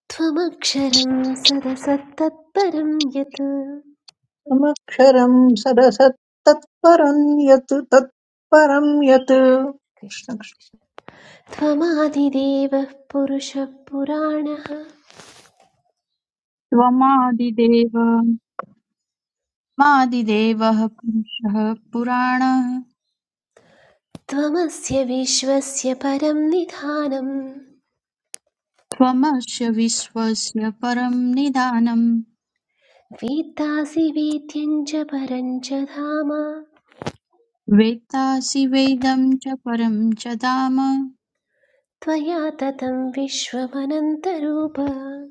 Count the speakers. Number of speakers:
three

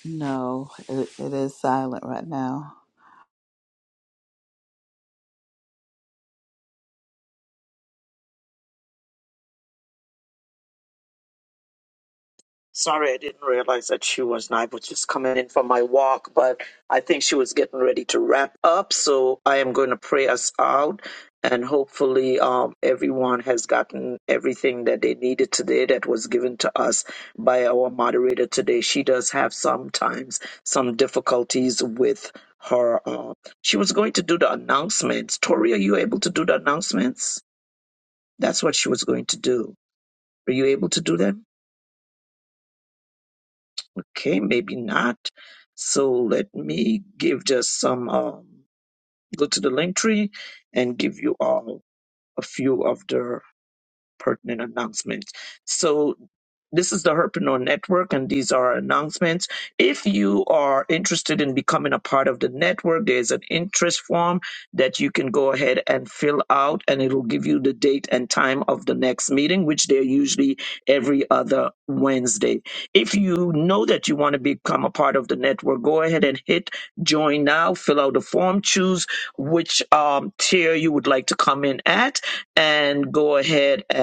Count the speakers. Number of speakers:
two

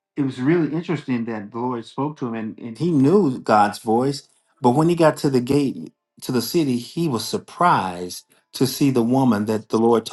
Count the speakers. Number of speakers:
one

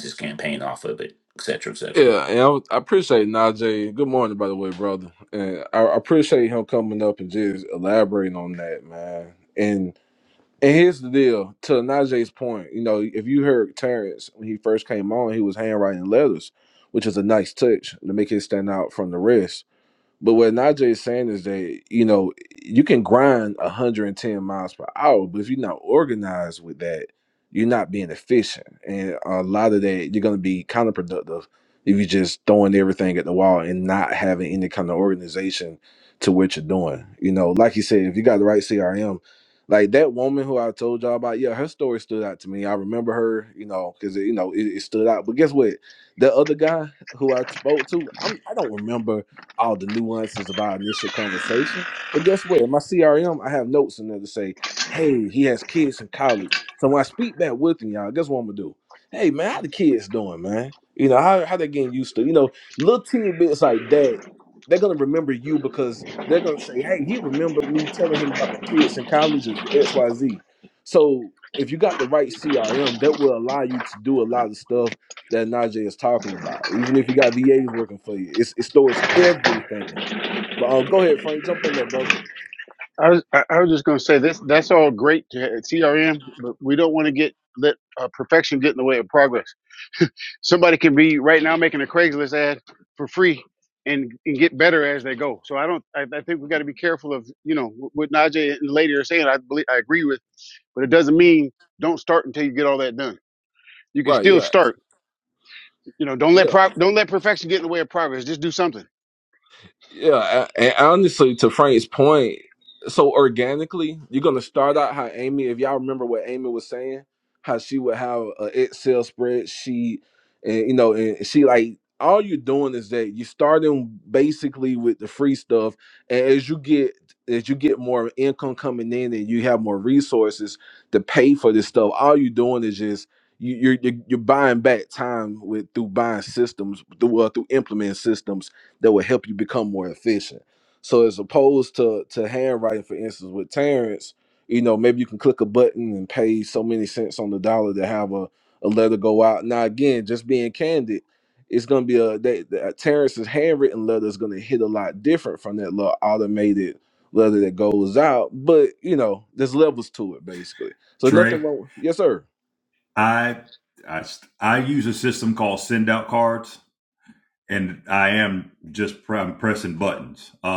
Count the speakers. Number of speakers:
four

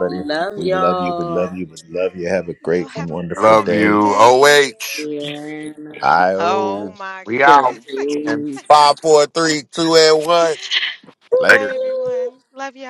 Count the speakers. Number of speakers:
four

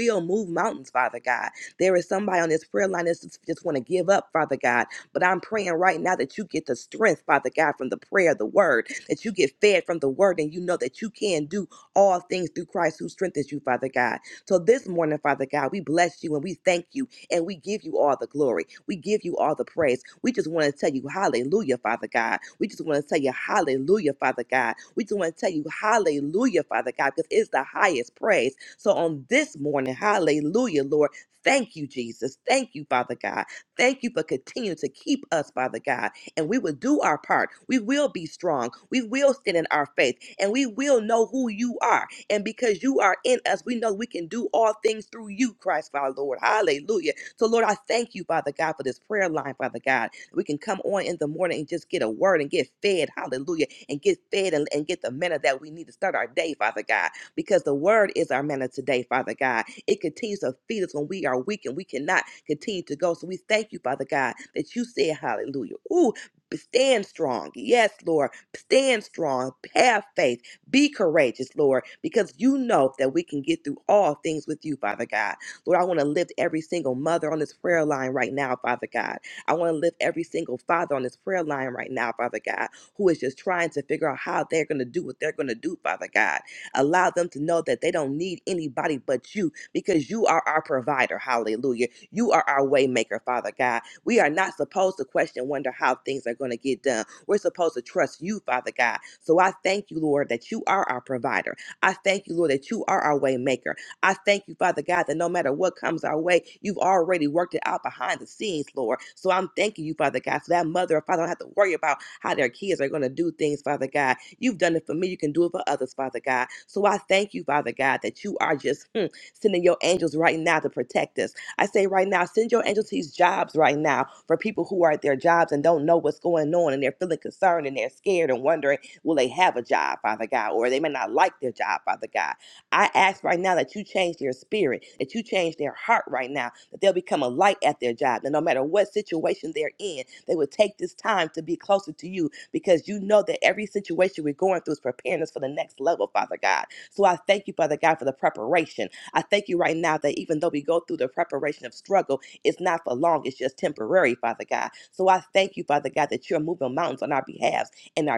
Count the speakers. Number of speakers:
one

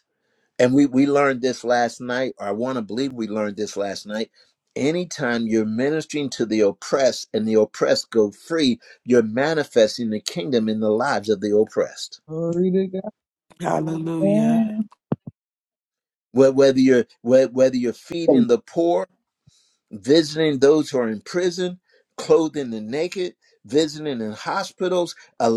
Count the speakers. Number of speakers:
three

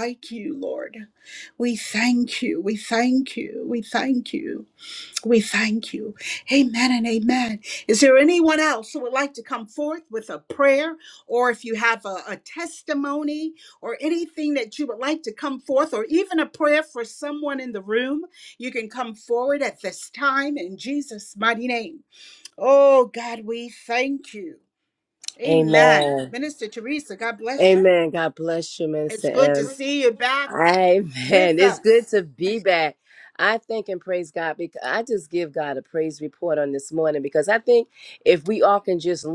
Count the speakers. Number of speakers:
two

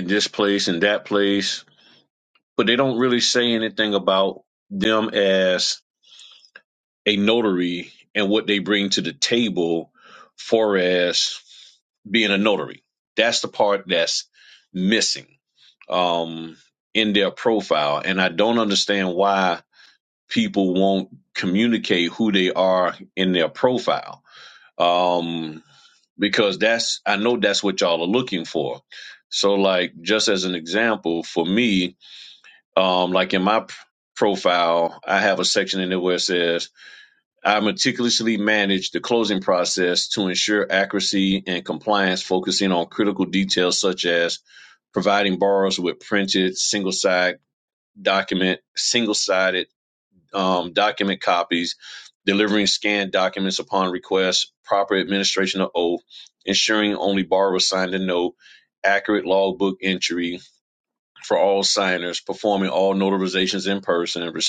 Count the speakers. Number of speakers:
one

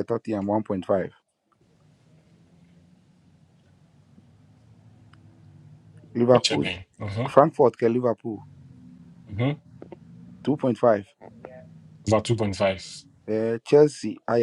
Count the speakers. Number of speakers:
two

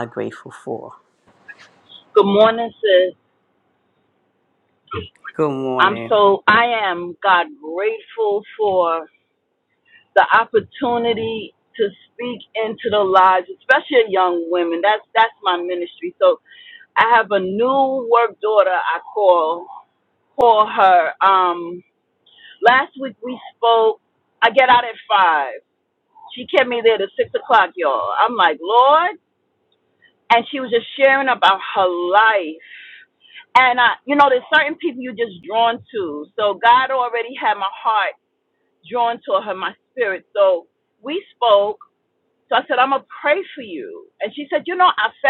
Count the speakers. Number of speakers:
two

